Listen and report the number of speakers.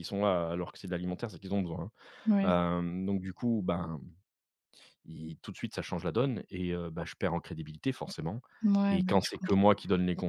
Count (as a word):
two